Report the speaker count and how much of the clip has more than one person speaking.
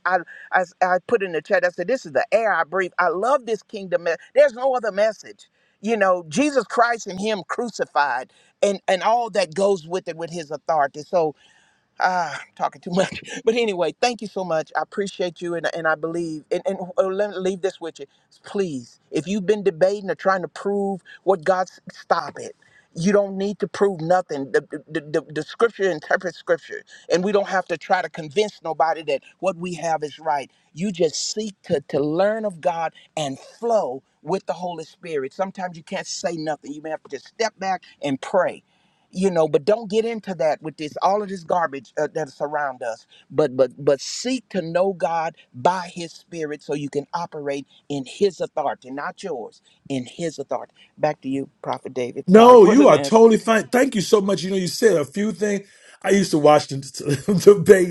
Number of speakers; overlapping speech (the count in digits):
2, about 1%